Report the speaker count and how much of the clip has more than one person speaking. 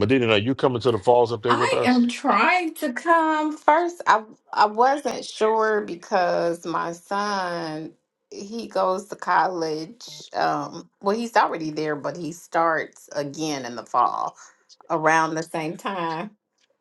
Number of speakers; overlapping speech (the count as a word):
two, about 3%